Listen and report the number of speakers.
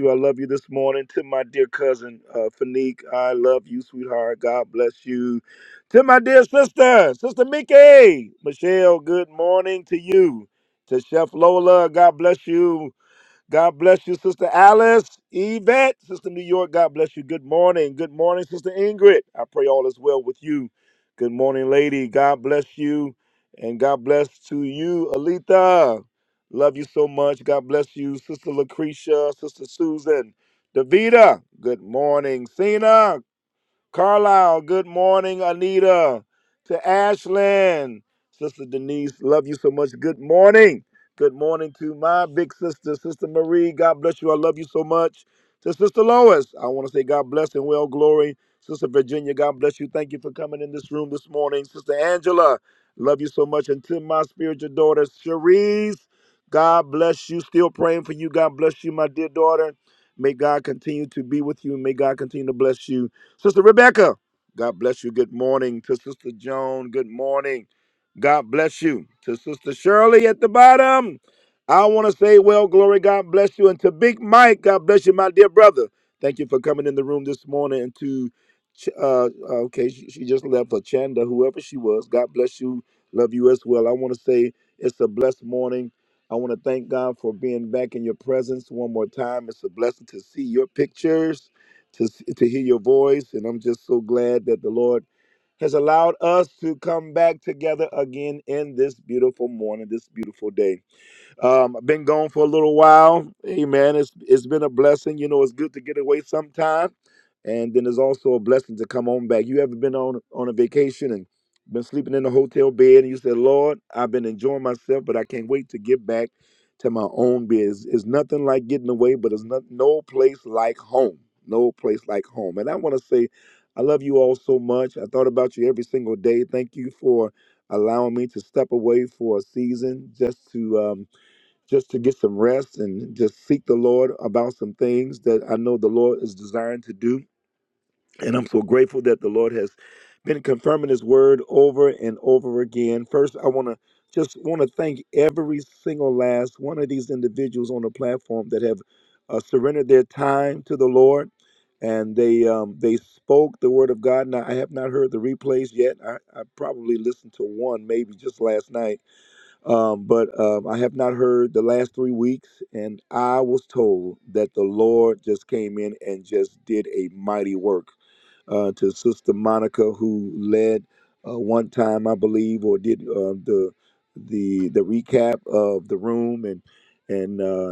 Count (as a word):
one